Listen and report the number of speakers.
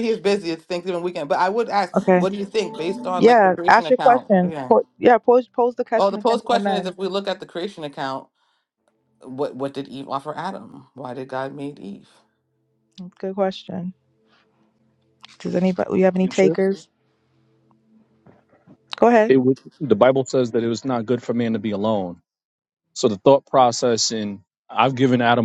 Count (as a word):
three